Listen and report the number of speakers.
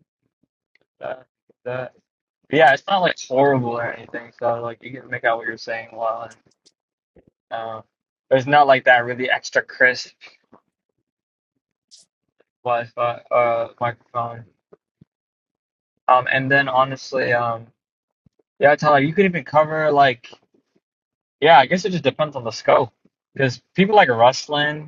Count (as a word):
one